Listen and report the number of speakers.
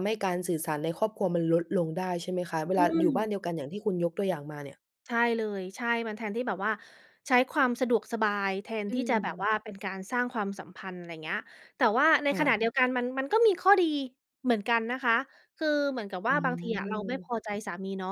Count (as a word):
two